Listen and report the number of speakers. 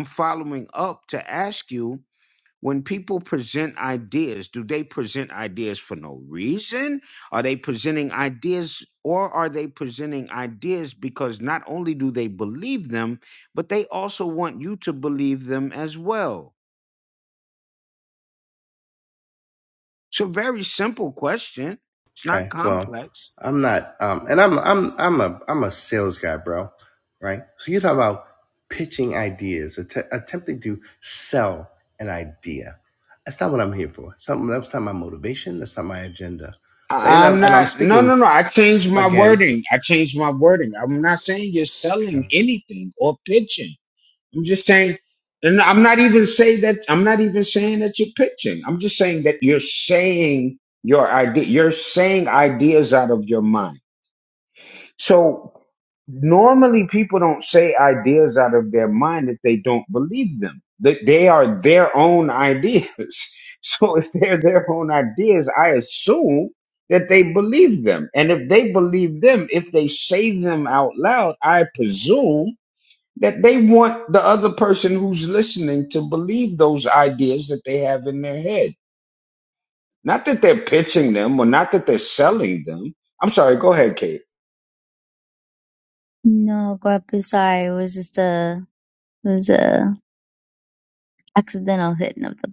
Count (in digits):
3